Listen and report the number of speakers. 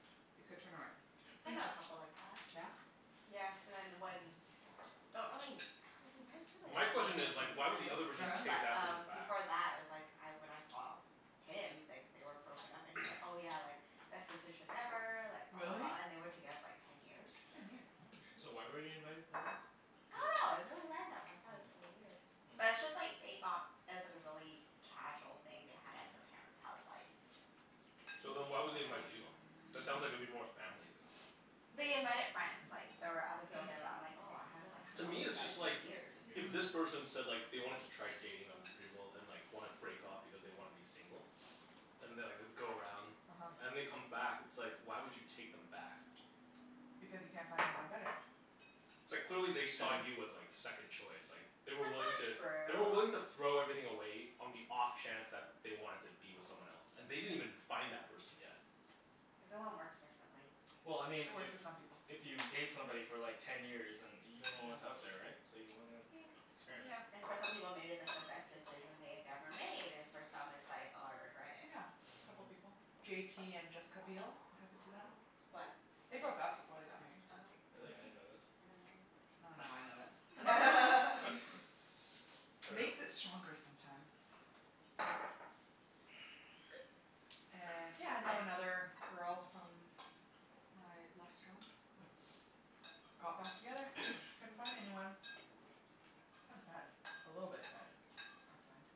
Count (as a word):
four